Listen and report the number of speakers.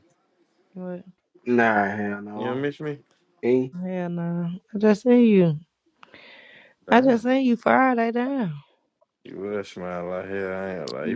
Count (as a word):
three